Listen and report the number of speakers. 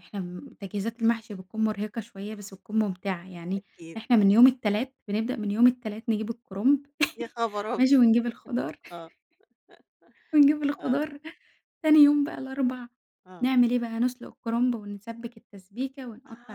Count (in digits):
2